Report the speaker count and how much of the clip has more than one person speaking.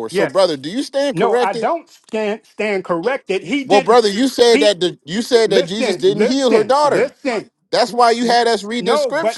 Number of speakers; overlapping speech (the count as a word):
two, about 37%